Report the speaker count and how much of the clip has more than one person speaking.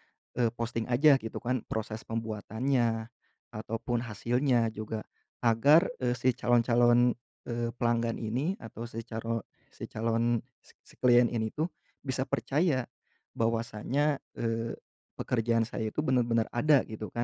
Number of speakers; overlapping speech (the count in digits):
1, no overlap